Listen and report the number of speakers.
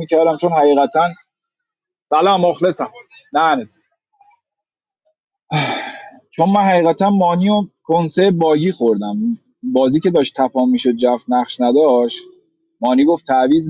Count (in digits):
1